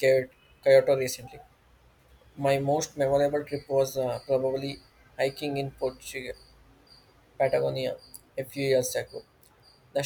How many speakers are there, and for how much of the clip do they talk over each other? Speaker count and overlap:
1, no overlap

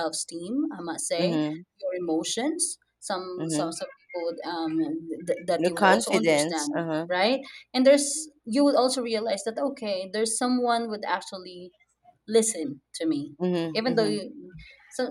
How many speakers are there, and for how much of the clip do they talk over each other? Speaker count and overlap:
2, about 17%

